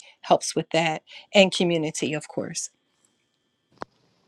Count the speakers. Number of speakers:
one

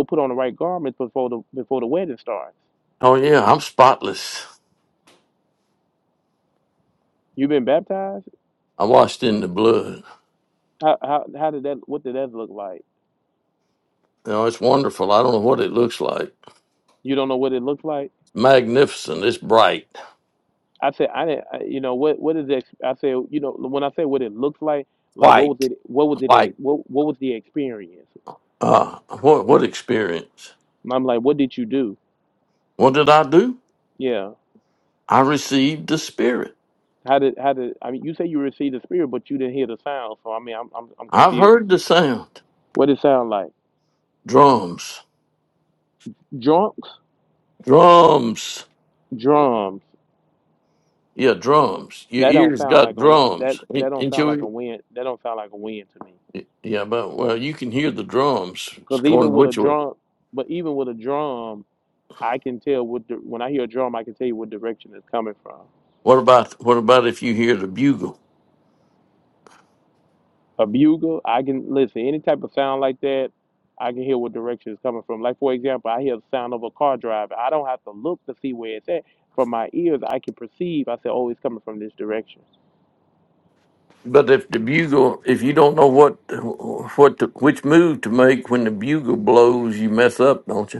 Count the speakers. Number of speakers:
two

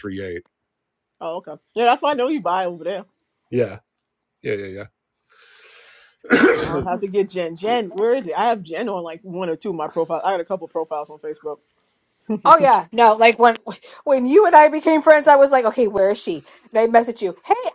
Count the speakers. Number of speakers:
three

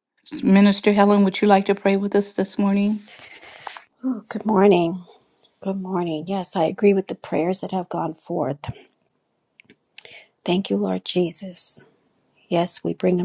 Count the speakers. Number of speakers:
two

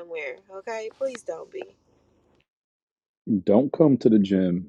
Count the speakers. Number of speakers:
two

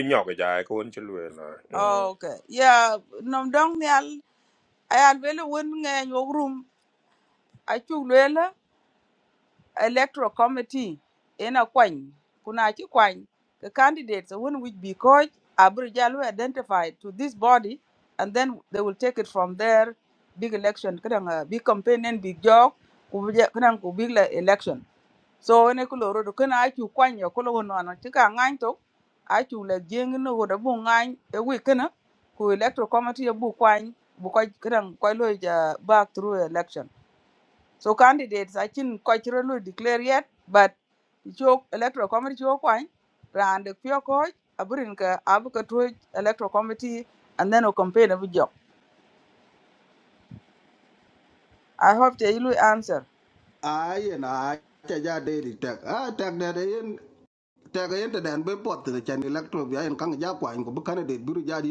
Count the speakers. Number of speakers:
three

